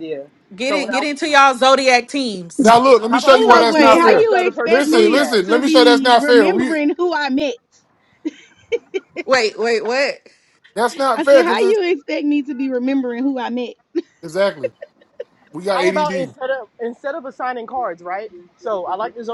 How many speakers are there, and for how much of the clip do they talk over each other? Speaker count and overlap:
four, about 26%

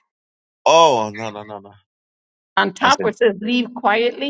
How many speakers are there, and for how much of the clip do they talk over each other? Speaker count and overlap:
two, about 7%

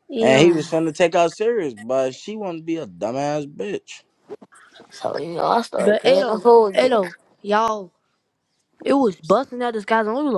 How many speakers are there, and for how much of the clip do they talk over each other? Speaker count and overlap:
three, about 17%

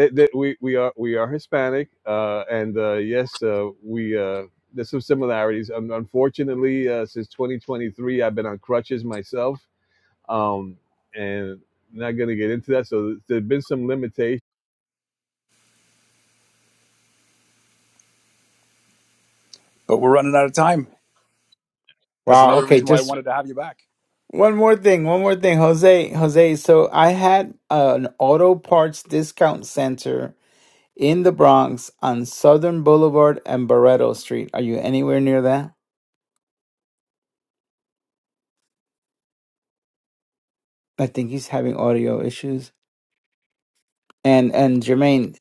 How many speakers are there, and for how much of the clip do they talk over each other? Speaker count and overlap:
three, about 2%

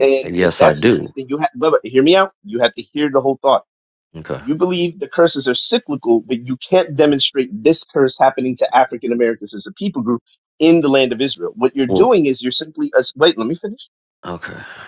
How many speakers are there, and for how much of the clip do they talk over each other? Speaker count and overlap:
two, about 7%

